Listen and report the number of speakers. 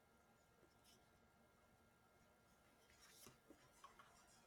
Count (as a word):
zero